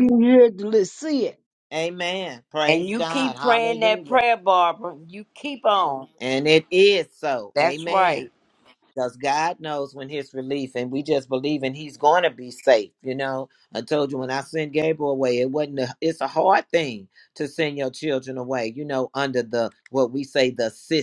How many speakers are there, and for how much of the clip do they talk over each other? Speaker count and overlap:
three, about 11%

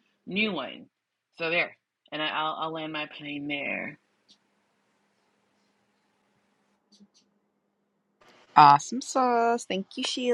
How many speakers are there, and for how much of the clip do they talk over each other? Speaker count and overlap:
two, no overlap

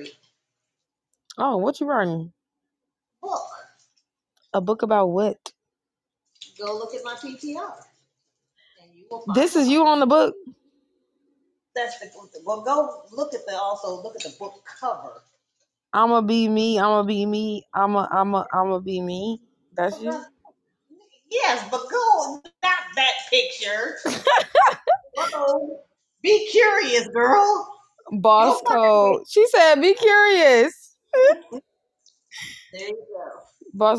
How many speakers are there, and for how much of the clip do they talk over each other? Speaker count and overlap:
two, about 4%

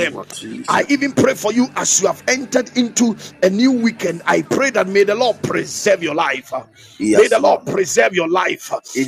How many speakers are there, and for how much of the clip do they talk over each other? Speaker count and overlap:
two, about 11%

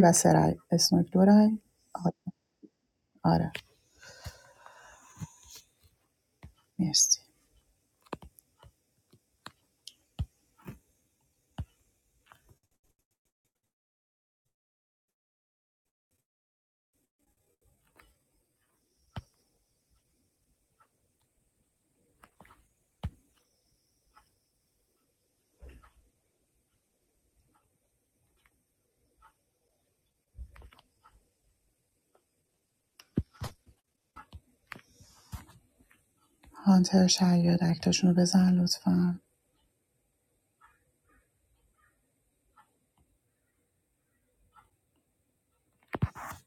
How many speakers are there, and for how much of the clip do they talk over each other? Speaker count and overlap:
one, no overlap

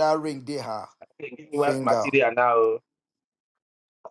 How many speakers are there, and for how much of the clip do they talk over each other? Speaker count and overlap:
two, about 11%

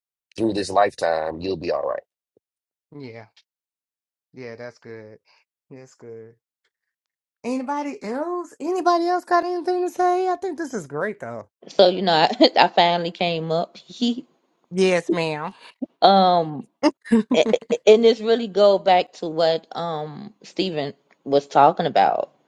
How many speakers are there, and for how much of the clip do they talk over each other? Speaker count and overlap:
three, no overlap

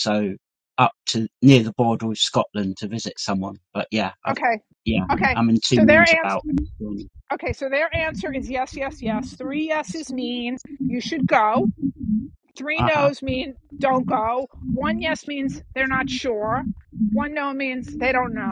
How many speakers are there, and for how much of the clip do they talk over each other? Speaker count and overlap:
two, about 7%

